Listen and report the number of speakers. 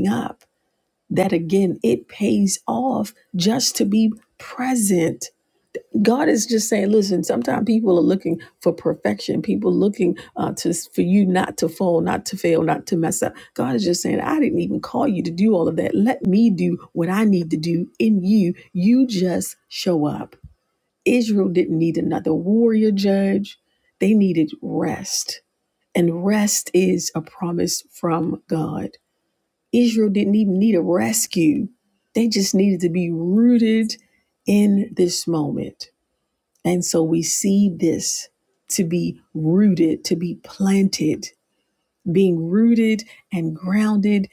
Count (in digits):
1